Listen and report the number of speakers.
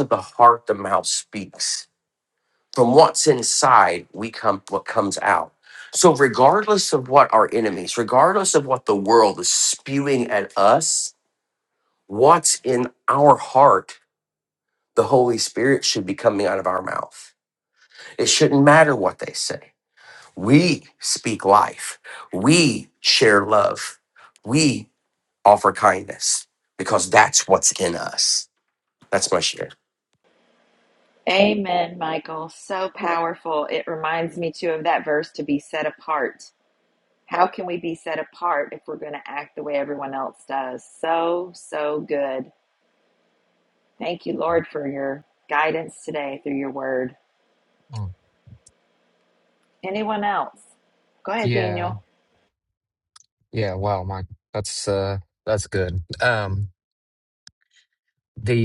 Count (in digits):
3